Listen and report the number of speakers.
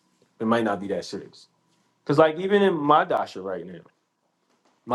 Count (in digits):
1